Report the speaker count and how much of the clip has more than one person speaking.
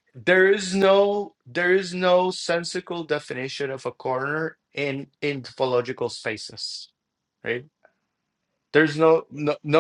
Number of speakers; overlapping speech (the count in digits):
1, no overlap